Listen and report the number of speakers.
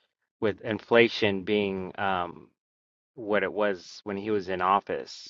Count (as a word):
one